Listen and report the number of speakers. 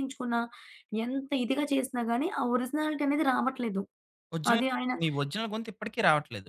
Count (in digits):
2